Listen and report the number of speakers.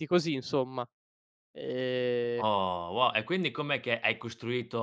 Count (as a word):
two